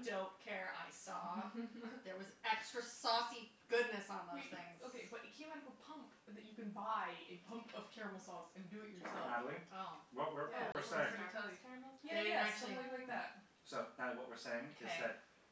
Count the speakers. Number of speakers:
four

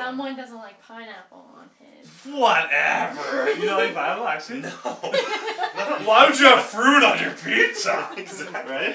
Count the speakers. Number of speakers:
three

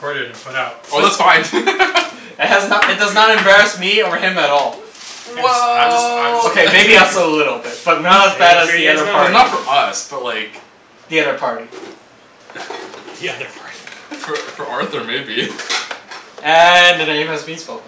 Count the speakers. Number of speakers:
three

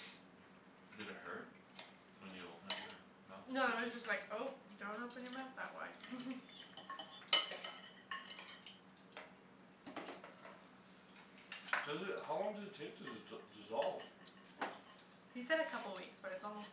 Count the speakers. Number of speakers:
three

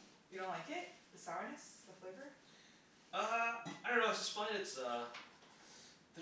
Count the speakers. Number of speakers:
two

